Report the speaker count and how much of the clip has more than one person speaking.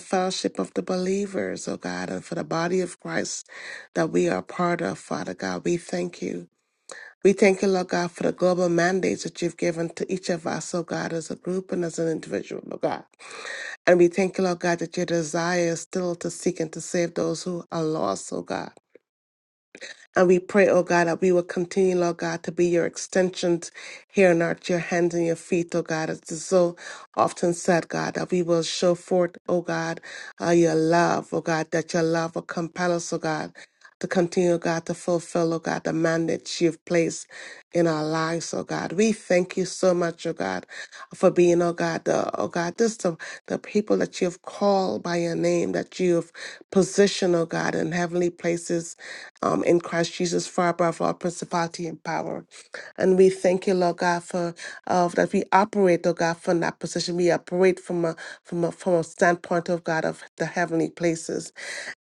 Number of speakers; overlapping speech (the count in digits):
1, no overlap